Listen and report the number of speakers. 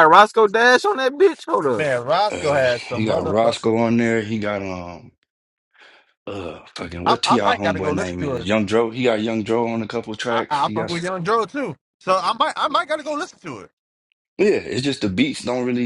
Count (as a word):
three